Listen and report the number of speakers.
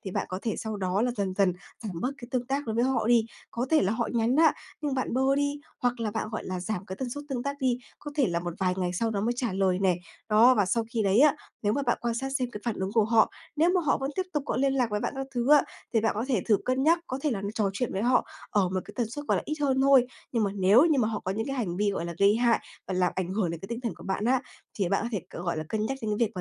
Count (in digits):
1